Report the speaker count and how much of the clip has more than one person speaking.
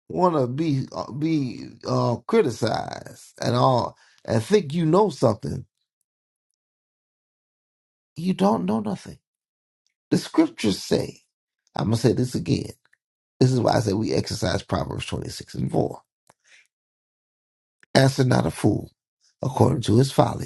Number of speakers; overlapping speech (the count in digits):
1, no overlap